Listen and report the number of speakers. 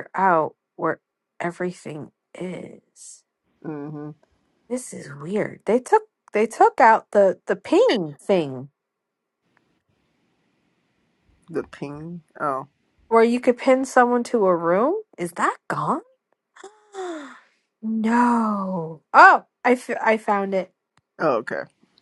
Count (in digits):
2